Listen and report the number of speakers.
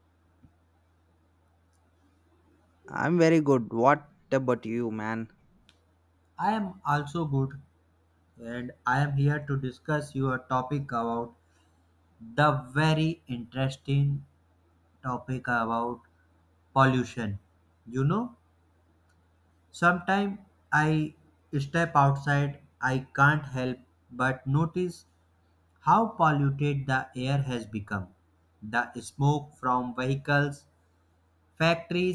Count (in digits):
2